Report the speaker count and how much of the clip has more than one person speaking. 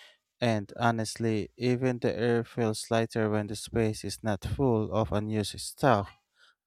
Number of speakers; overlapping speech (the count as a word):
one, no overlap